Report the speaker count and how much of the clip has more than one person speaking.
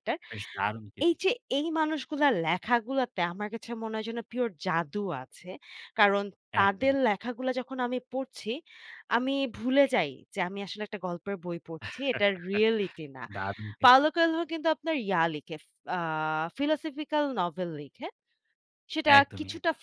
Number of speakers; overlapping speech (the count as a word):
two, about 6%